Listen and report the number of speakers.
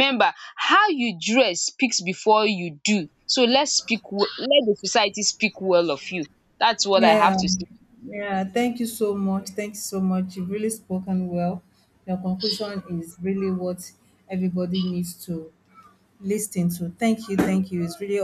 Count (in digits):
2